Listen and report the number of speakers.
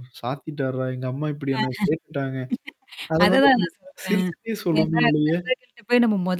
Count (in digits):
2